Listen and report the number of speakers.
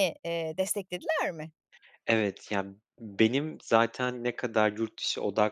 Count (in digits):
2